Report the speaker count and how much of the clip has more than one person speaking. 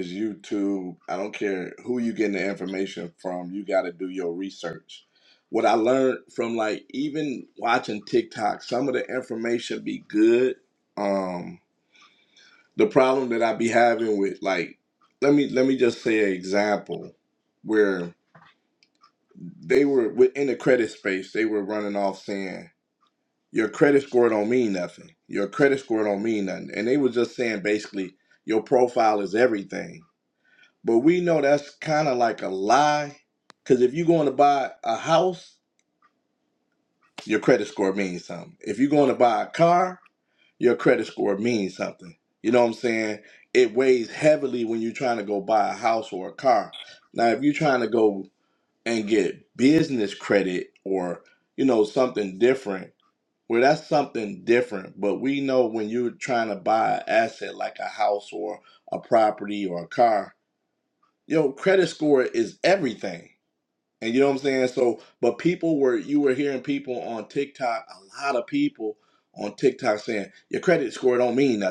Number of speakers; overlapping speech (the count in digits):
1, no overlap